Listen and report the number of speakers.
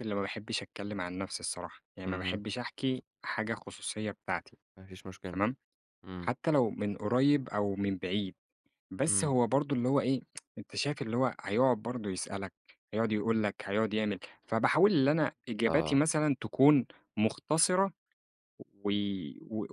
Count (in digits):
2